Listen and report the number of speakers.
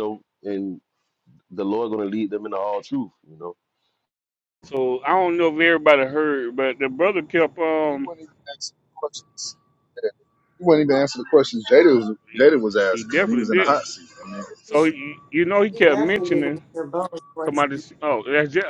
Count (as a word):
four